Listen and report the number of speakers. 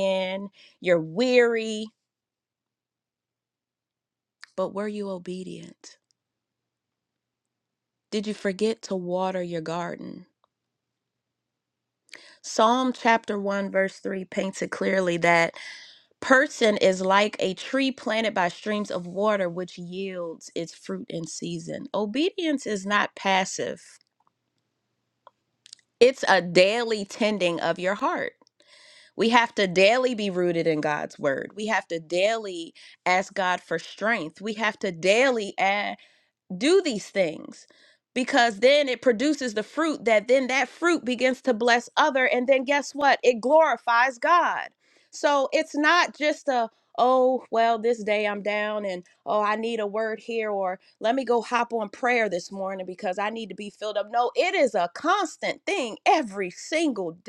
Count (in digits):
1